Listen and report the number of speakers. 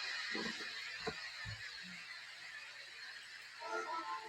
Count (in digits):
0